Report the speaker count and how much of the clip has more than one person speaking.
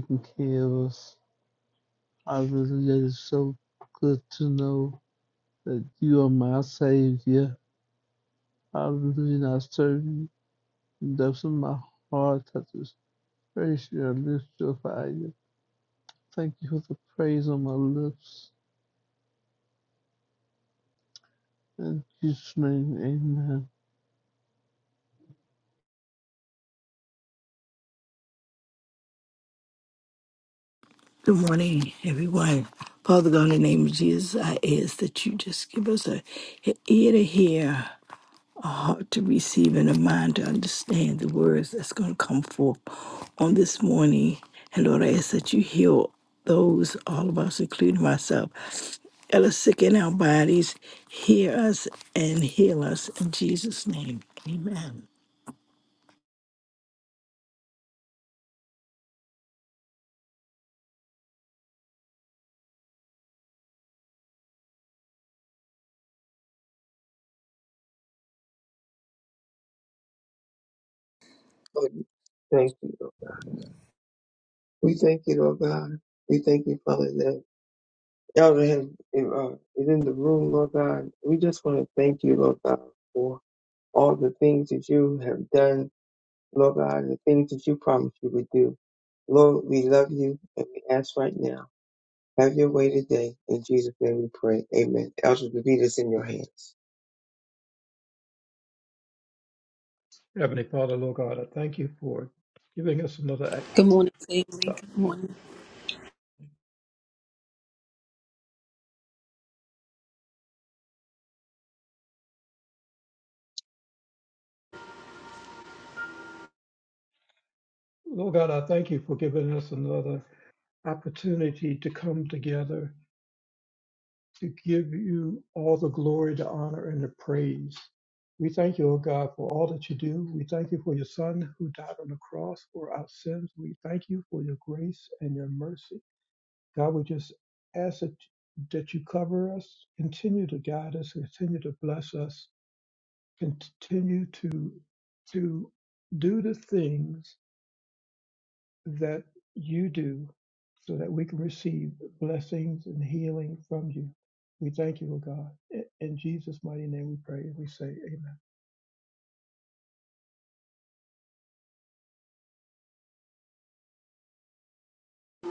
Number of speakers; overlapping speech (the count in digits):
5, under 1%